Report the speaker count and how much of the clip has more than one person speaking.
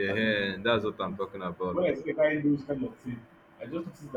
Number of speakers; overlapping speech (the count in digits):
2, about 8%